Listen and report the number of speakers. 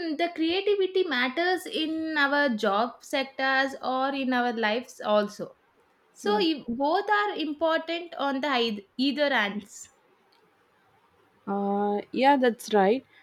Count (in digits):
2